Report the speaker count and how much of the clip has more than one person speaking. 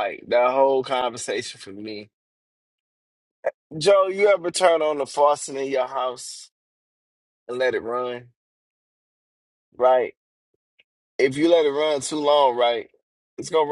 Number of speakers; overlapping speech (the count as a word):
one, no overlap